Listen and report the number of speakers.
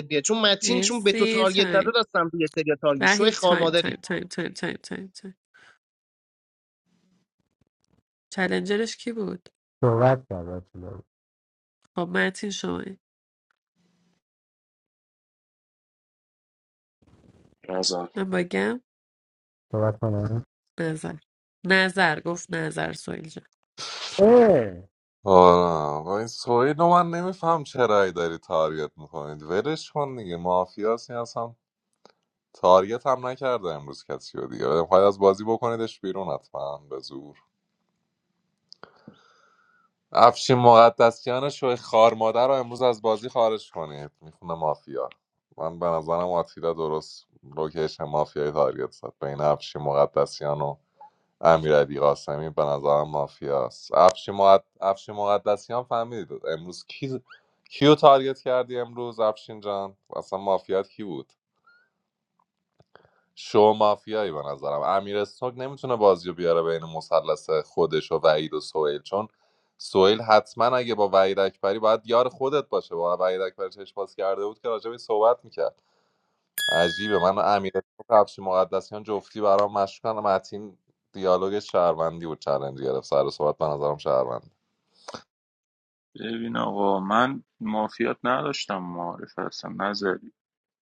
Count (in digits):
5